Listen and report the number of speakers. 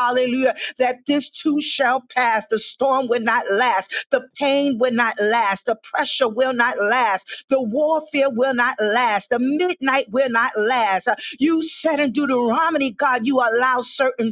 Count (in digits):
1